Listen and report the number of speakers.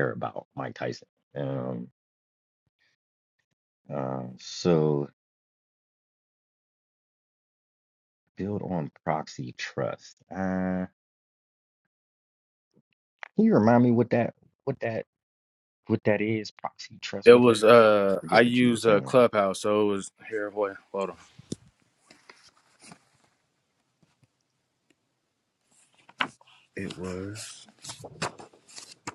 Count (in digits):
2